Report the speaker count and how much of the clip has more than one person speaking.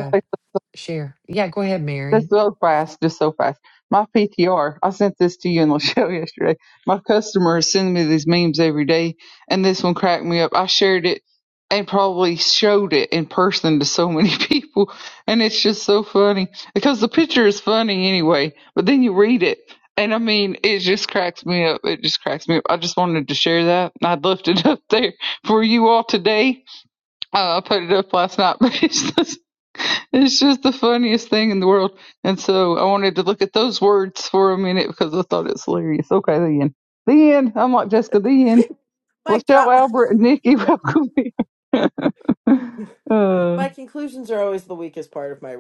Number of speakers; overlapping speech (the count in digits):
3, about 2%